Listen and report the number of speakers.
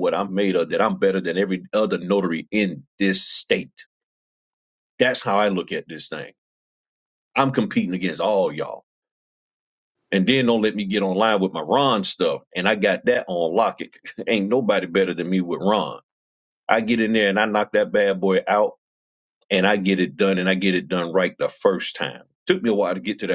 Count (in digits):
1